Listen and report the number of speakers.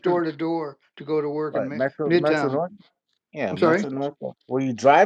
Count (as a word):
two